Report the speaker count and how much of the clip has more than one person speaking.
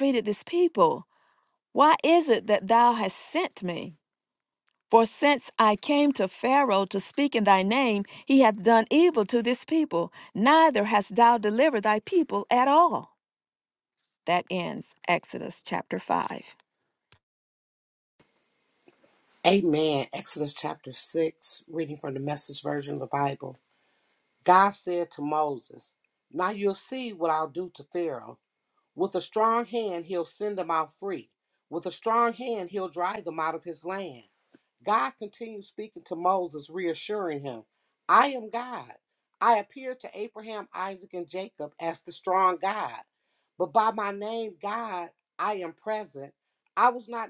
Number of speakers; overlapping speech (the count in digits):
2, no overlap